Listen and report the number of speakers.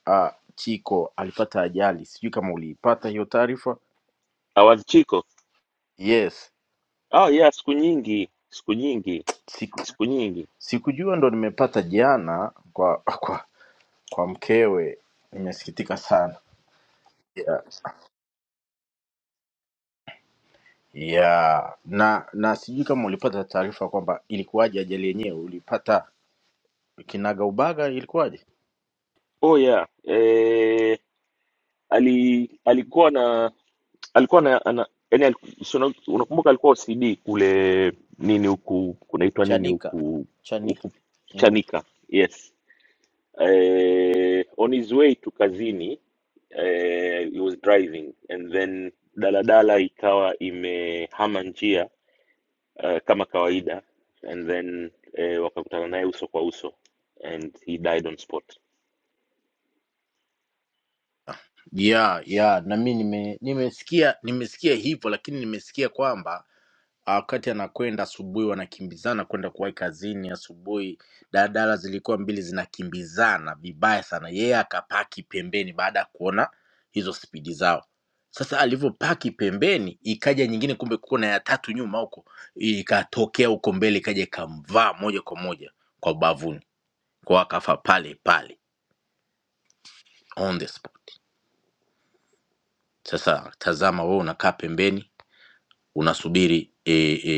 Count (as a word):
two